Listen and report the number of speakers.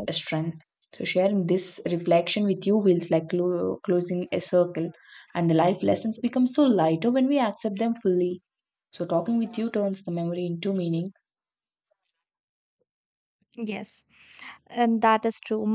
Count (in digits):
2